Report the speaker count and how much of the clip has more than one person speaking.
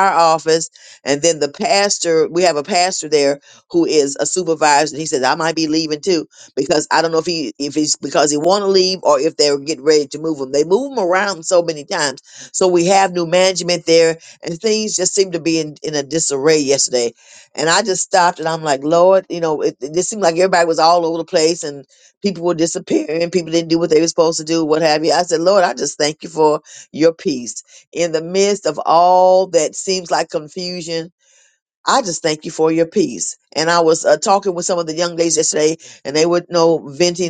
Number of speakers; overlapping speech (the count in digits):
1, no overlap